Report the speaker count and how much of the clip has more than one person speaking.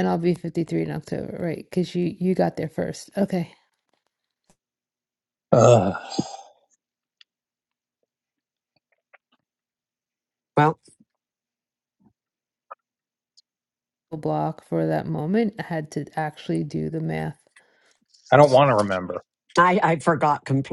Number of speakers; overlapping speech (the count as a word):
three, no overlap